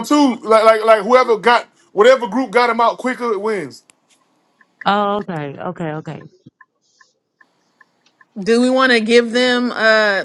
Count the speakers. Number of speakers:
three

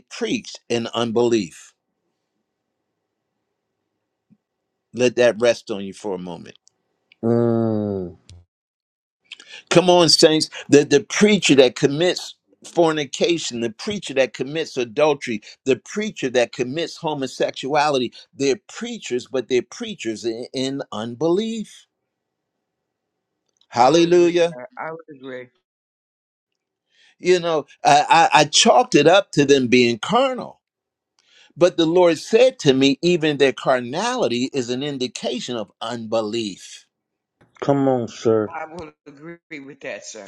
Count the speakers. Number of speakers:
three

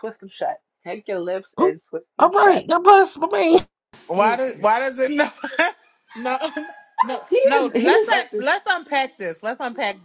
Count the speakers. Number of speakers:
three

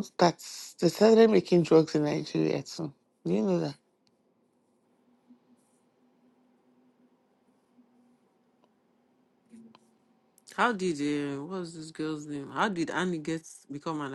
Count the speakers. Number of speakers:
two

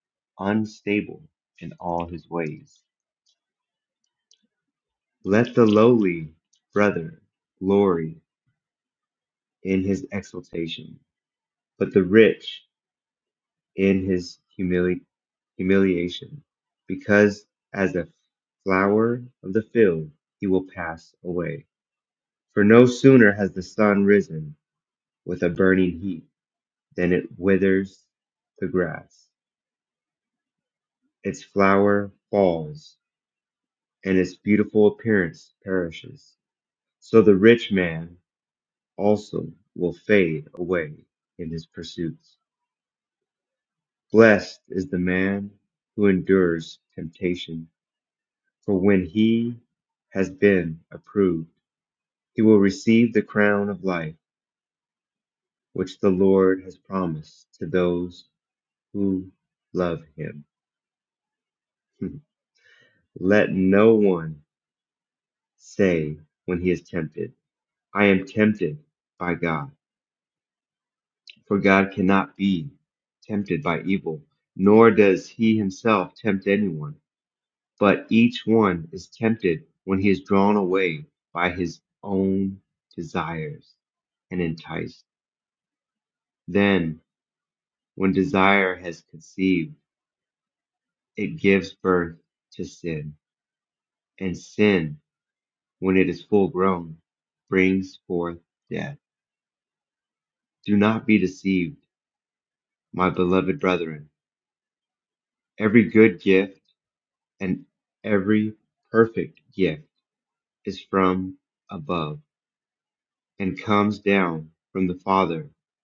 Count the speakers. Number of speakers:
one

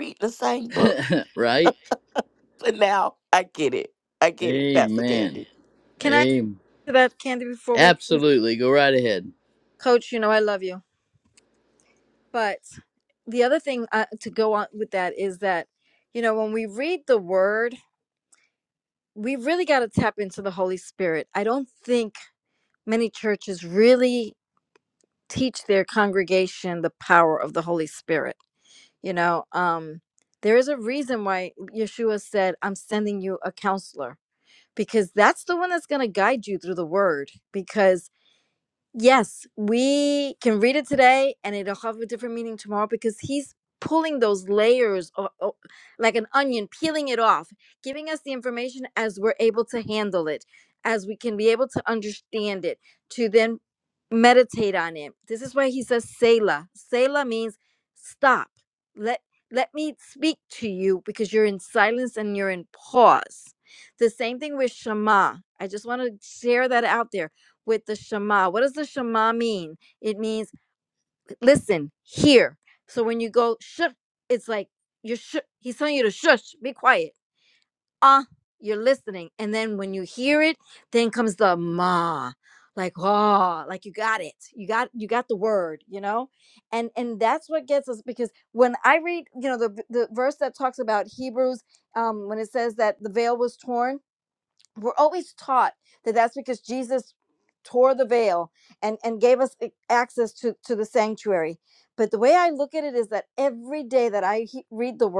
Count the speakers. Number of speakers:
three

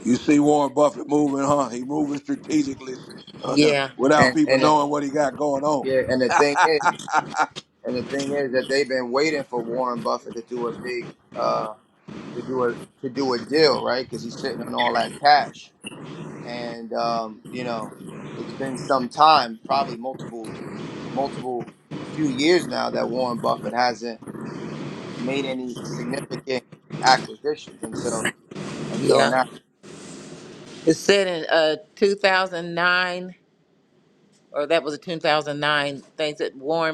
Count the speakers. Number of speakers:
three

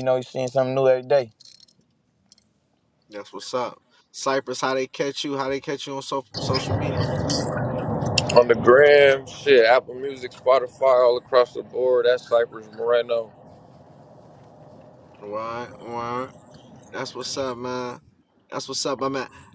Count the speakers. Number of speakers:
three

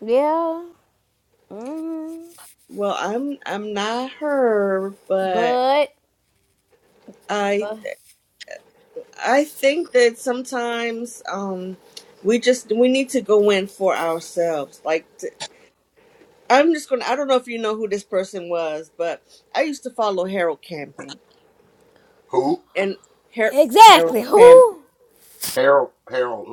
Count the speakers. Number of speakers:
three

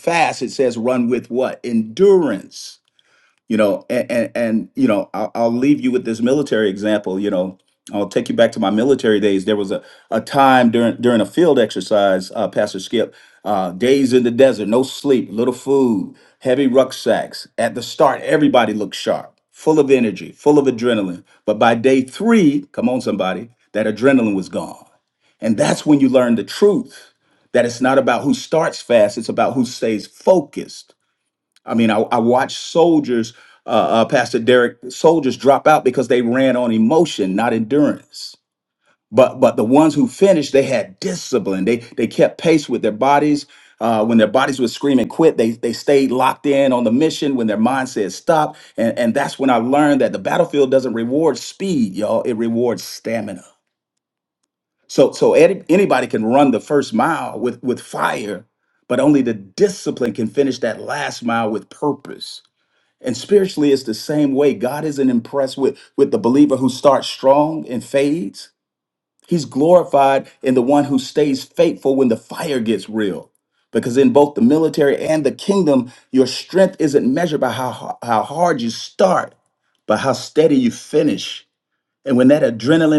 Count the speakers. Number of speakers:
one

